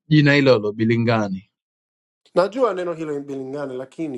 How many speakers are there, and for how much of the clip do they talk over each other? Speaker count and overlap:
two, no overlap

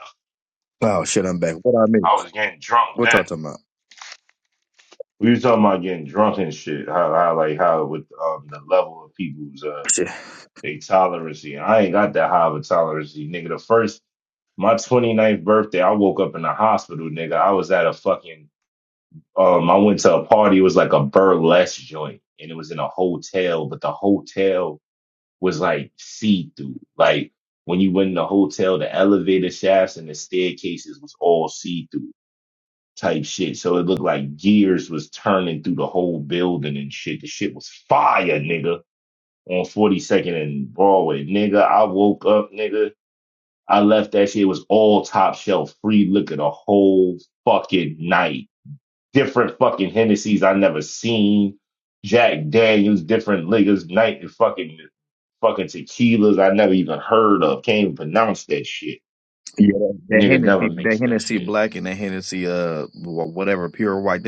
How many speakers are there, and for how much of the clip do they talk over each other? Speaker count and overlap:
two, about 3%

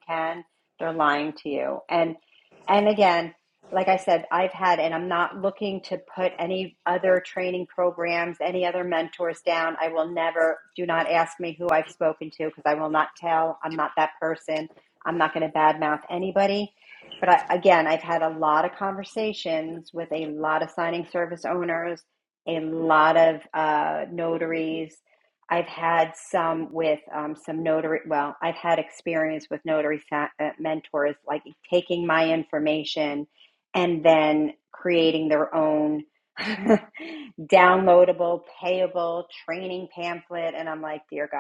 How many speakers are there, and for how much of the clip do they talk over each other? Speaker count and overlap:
one, no overlap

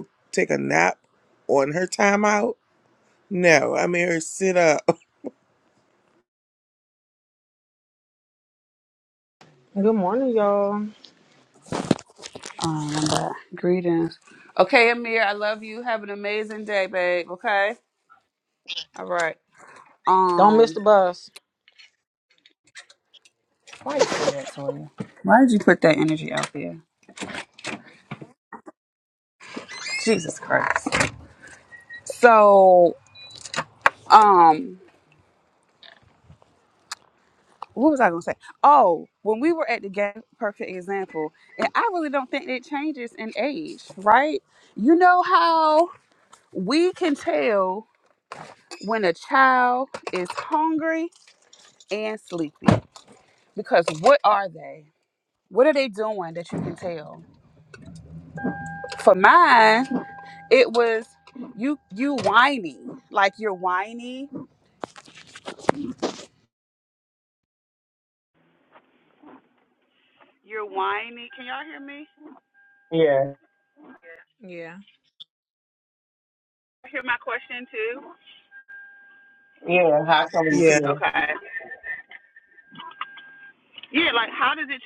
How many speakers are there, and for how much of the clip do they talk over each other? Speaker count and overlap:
four, about 1%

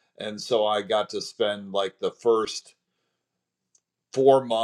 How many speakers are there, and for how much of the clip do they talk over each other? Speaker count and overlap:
one, no overlap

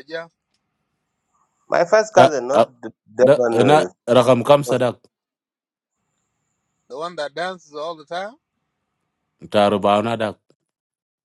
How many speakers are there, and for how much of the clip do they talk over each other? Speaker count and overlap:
three, about 11%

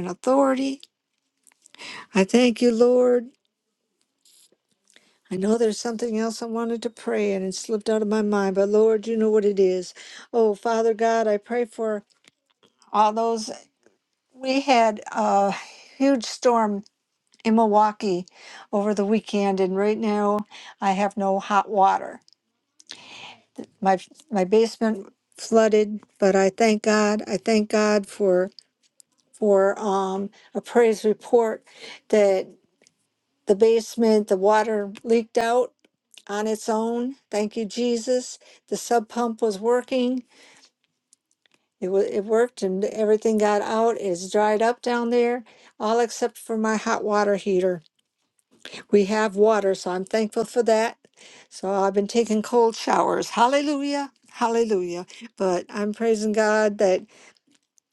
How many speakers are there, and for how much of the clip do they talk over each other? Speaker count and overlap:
one, no overlap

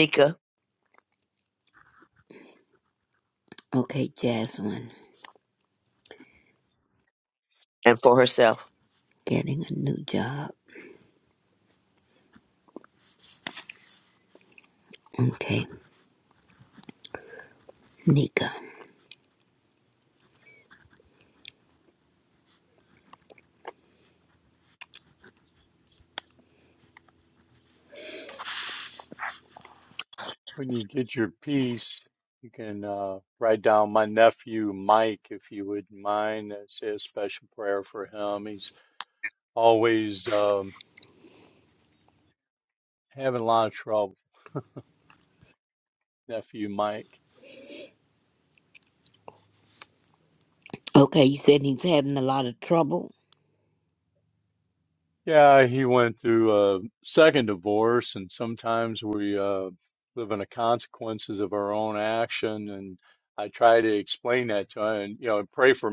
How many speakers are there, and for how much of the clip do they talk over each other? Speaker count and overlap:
three, no overlap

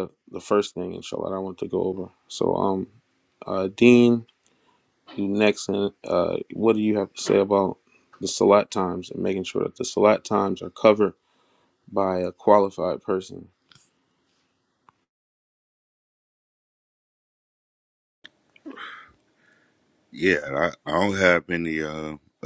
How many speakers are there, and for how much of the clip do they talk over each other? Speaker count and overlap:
two, no overlap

